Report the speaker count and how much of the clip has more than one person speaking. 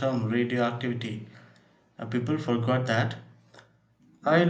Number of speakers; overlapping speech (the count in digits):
1, no overlap